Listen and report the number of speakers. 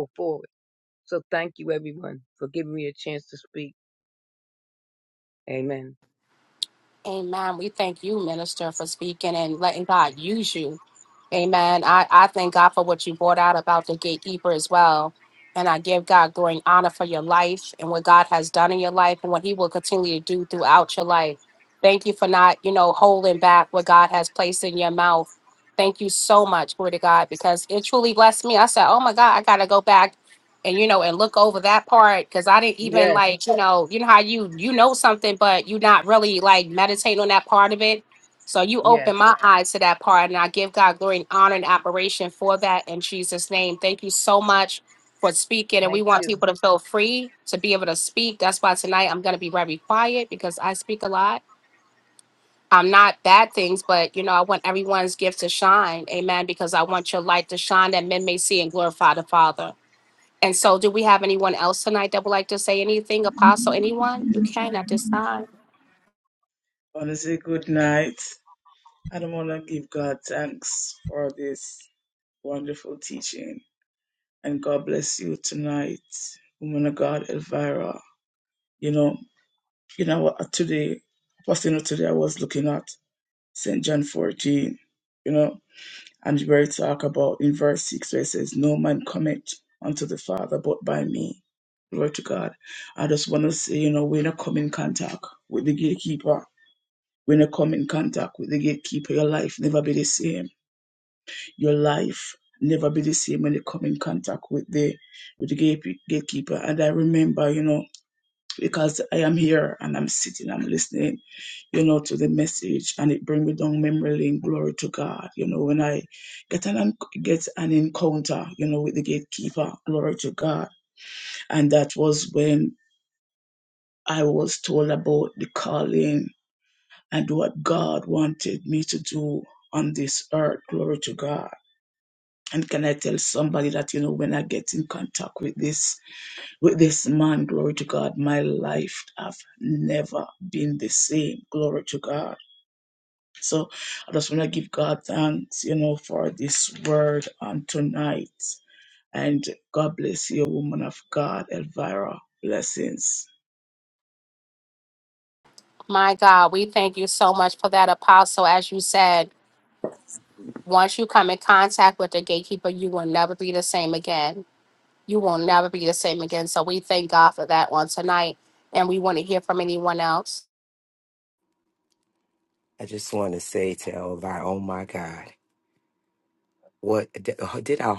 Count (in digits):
4